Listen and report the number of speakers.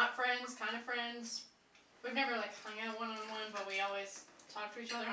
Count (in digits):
1